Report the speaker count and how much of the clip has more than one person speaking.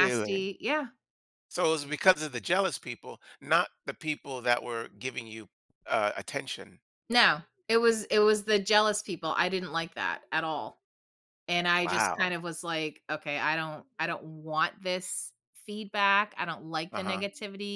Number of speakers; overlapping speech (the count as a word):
two, about 7%